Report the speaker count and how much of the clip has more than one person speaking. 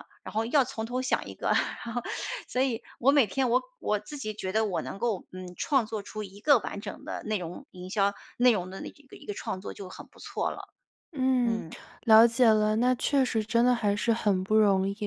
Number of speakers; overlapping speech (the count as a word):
two, about 1%